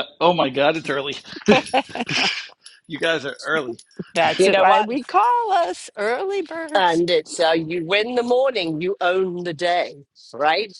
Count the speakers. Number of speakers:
3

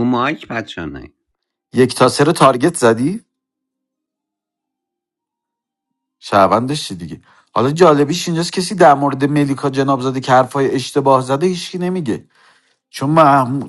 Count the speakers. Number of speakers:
2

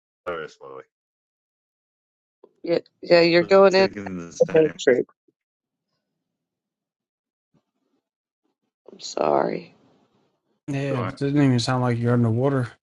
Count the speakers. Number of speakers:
3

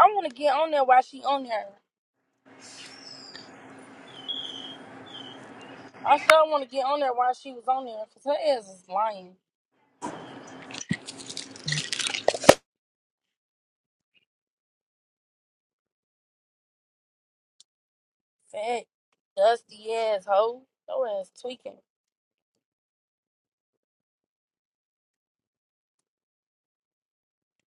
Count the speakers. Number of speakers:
1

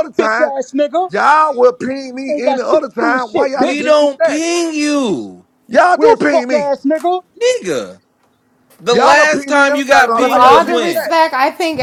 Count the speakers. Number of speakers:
4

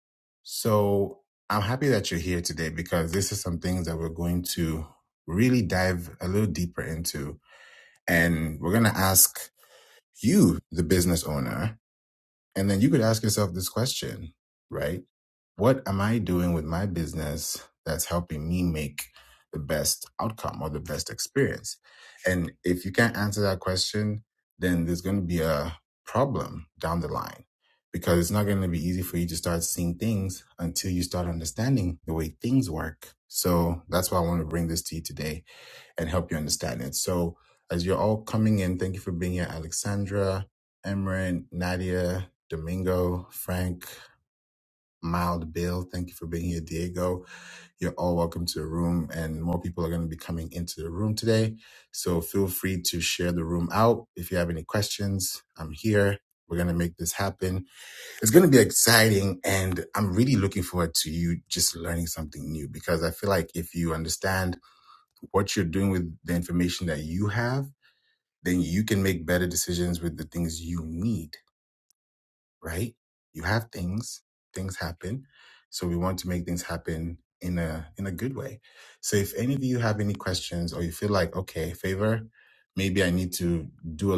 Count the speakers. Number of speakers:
1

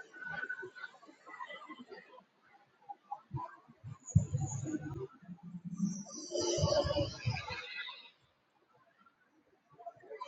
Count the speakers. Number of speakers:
0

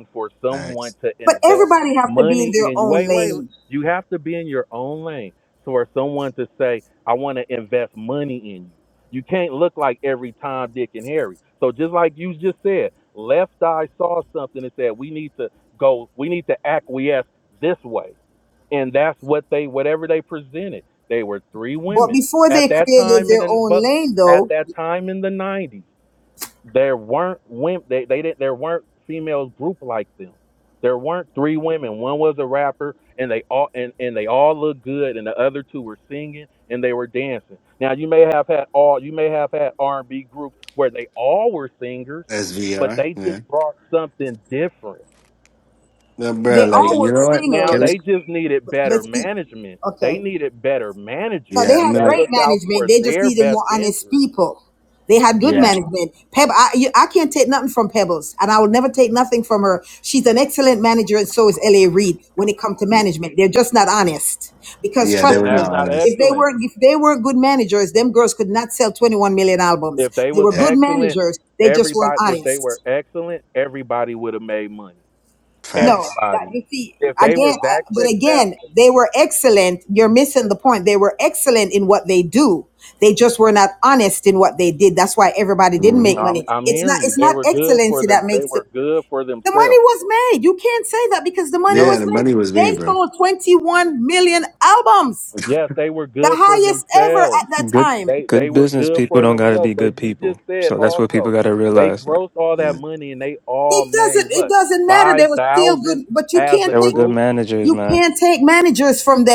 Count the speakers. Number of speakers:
4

